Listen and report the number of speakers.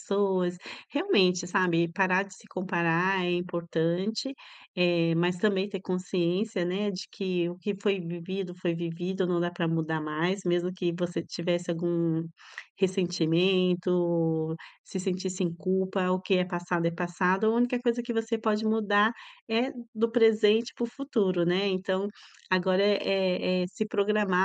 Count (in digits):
1